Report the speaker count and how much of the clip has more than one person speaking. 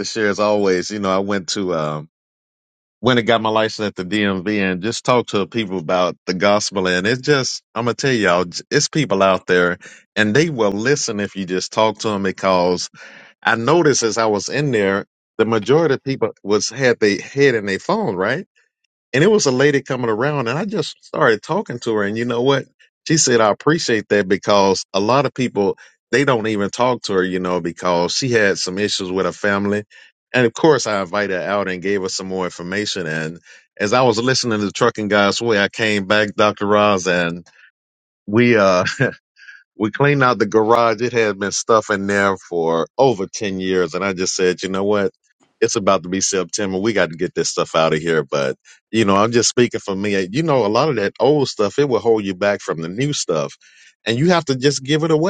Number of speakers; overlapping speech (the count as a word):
one, no overlap